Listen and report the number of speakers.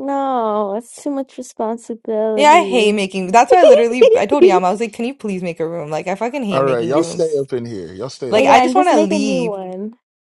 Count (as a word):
three